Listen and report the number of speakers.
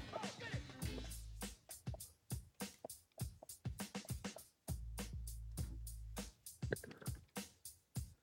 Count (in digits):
0